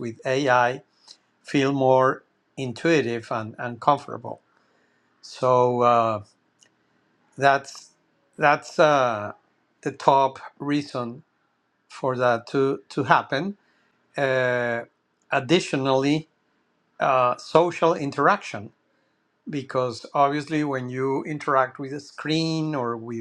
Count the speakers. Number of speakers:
1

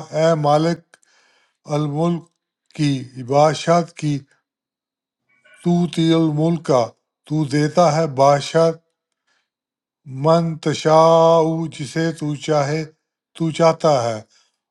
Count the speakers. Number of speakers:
1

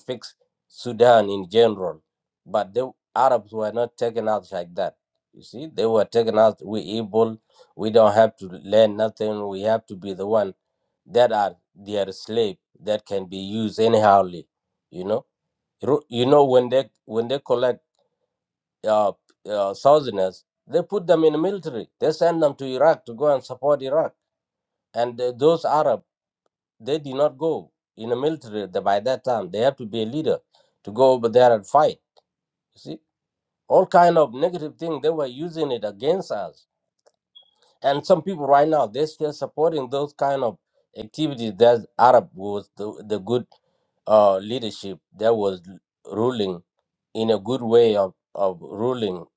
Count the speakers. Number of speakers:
1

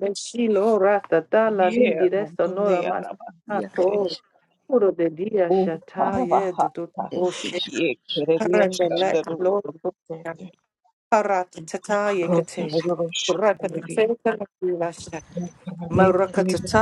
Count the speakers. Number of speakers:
2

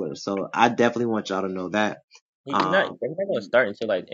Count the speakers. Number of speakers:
2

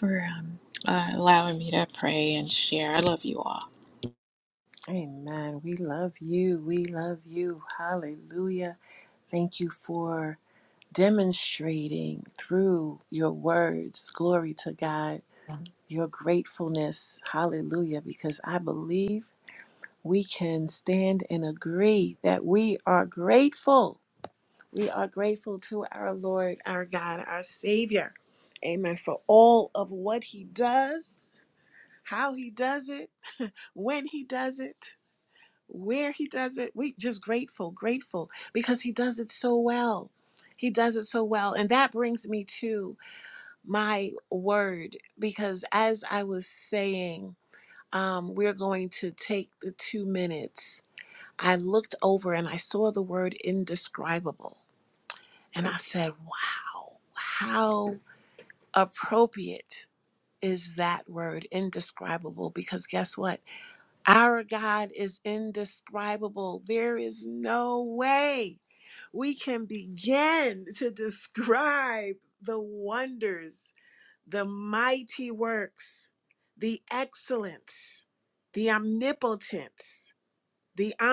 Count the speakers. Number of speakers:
2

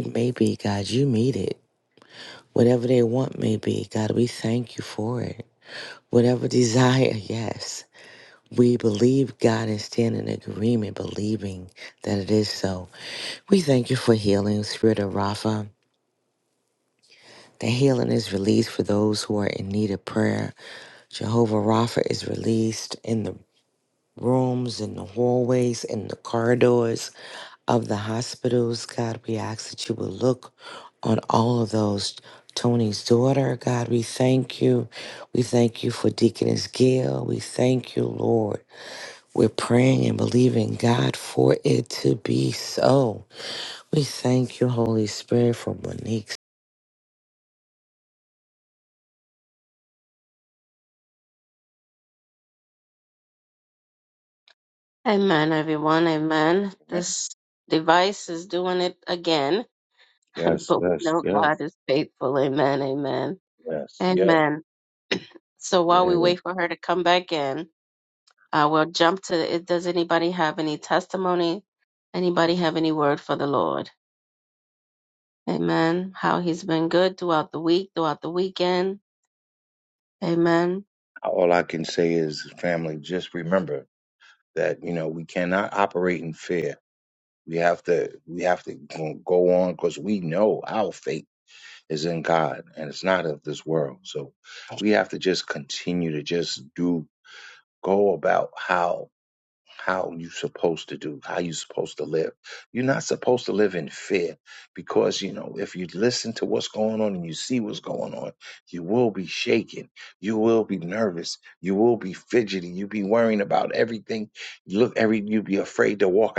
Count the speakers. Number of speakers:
3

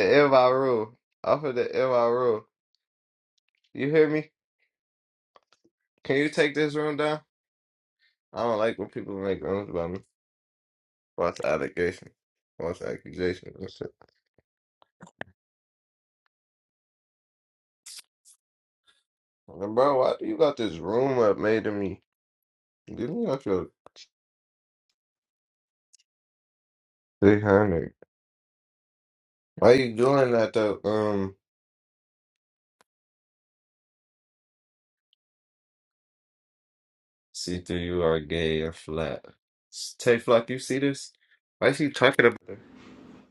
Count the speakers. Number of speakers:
1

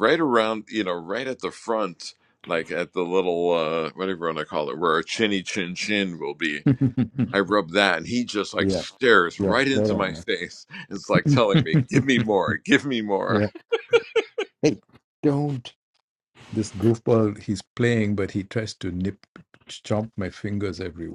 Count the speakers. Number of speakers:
2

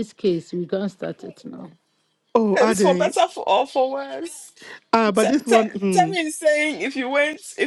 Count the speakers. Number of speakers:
3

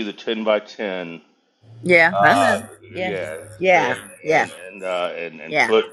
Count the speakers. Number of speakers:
2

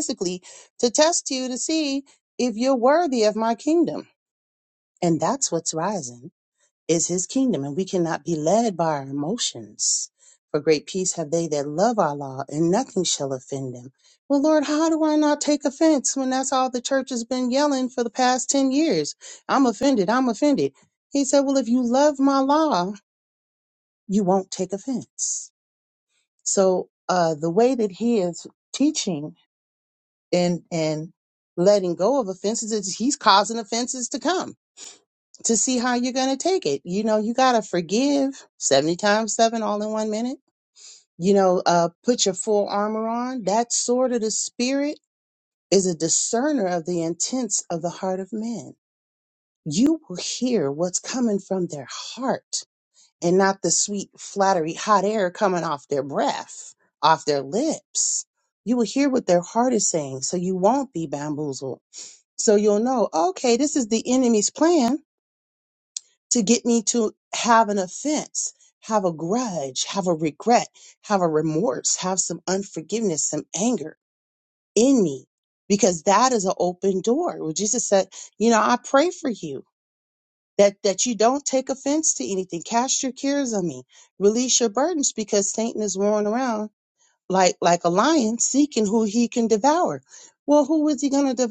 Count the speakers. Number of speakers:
1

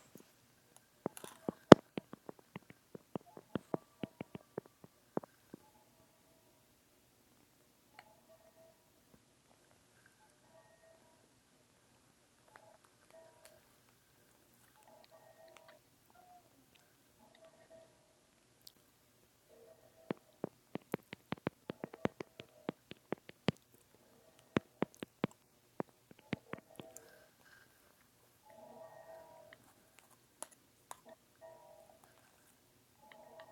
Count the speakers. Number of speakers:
0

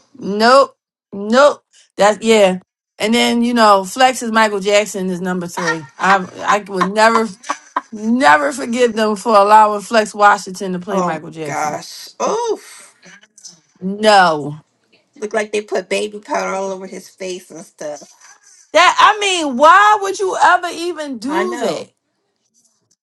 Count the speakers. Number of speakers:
2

